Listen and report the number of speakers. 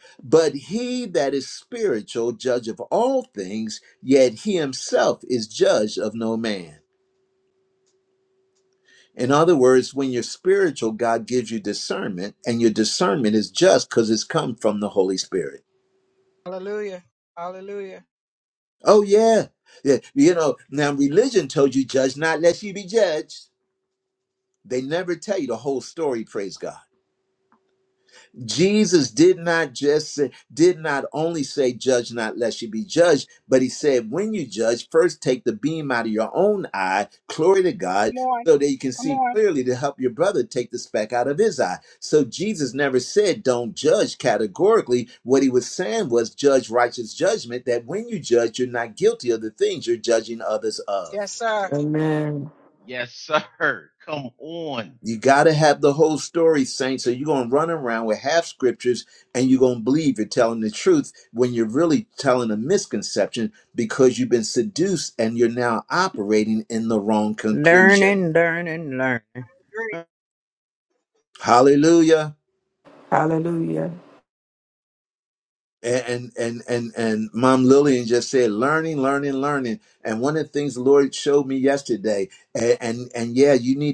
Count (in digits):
5